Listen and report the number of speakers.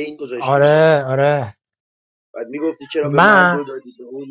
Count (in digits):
2